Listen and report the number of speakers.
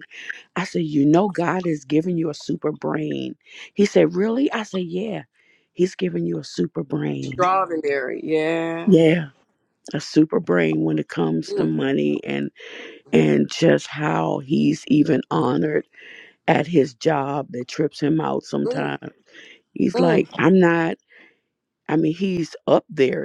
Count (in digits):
2